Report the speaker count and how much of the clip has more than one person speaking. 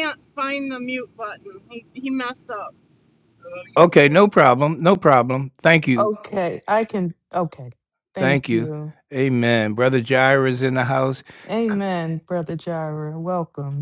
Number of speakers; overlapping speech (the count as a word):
three, about 5%